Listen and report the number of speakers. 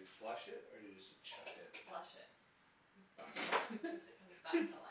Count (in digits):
2